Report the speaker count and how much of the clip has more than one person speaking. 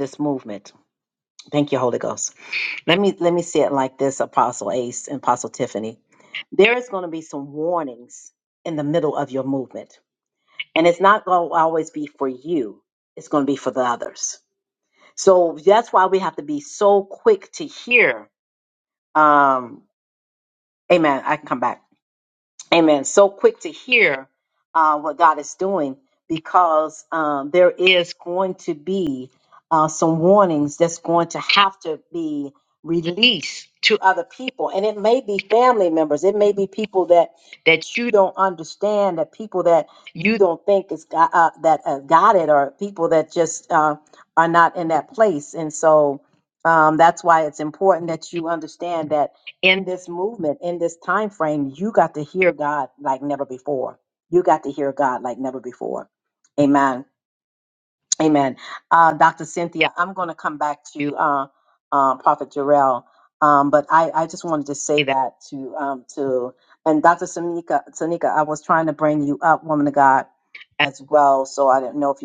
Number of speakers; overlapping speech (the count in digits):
1, no overlap